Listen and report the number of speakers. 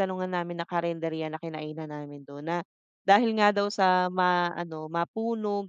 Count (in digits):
1